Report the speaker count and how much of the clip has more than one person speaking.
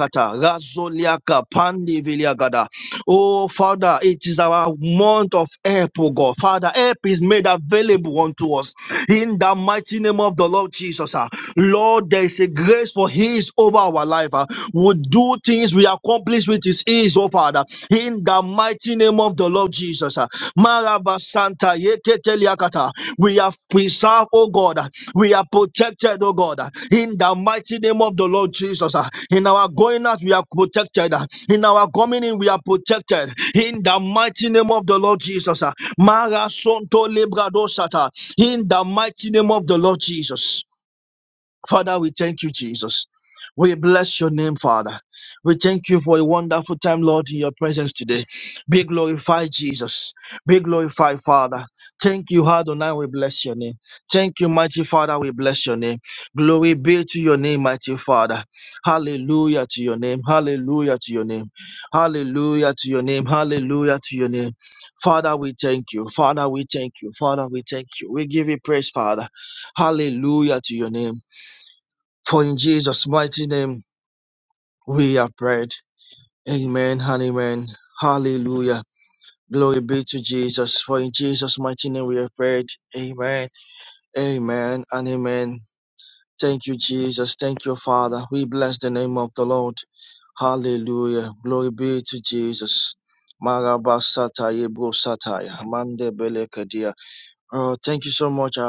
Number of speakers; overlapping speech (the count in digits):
1, no overlap